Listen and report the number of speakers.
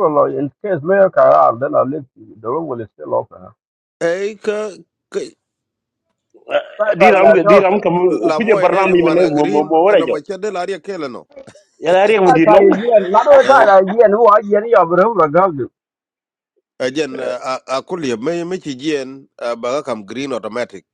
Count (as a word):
three